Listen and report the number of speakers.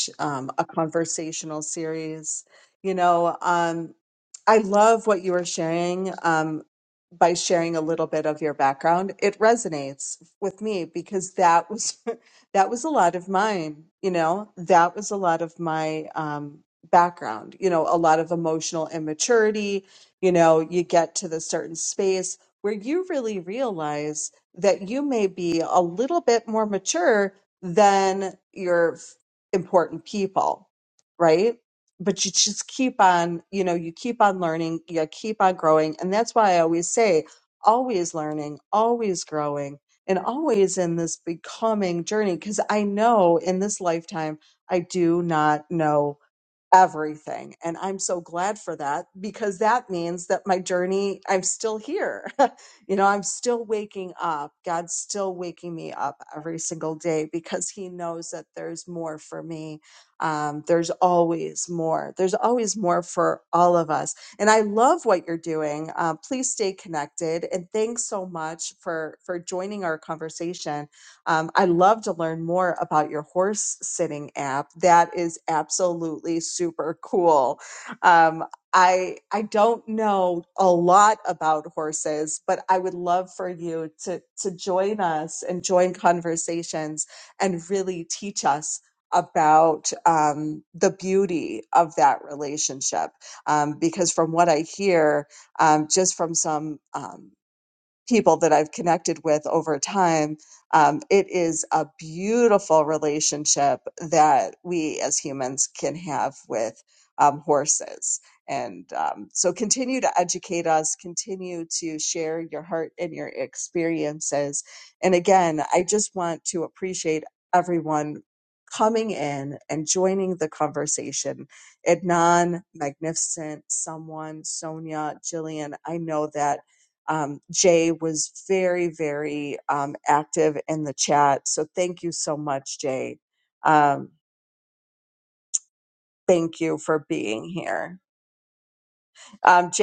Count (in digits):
1